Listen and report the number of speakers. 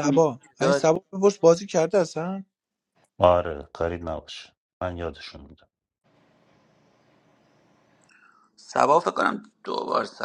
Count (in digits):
3